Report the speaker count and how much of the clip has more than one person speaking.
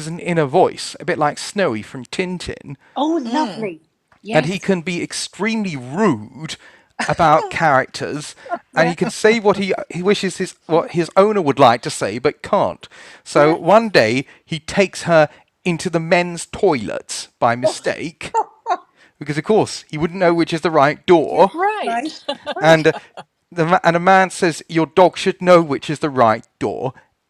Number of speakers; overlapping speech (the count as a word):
three, about 10%